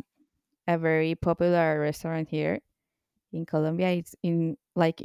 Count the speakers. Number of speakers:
1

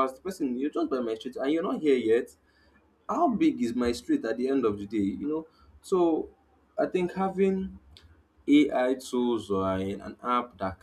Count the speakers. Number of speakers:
1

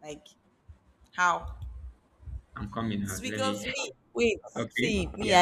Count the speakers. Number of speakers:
2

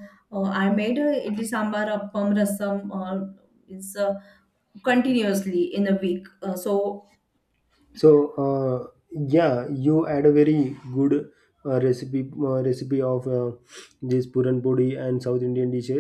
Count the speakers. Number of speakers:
2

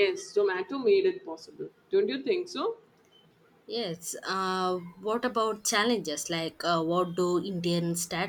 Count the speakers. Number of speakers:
2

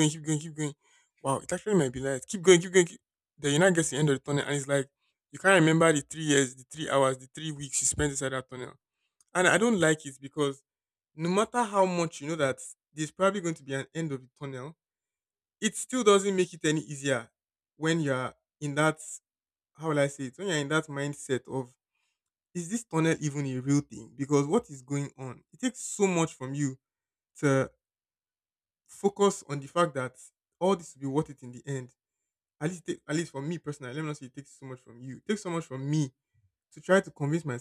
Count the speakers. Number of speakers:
1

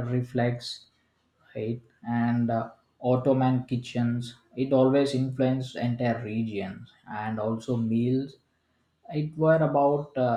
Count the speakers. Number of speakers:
1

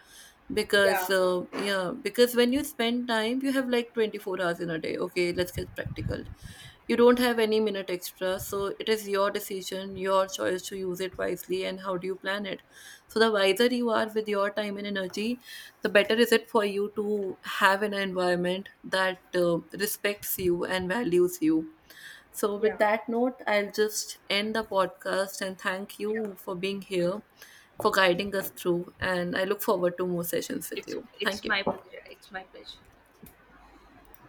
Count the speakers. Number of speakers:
2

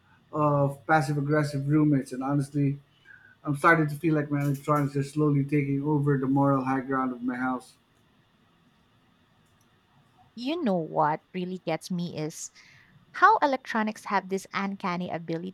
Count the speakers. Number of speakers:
2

